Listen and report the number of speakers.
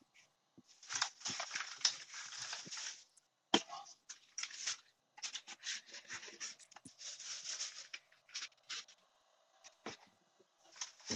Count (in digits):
0